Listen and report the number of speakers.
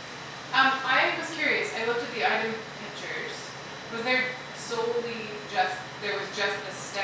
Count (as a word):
one